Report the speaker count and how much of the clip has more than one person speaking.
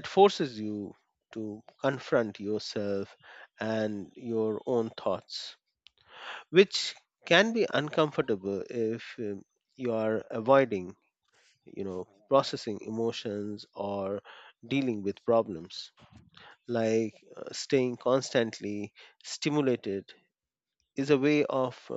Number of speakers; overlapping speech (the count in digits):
1, no overlap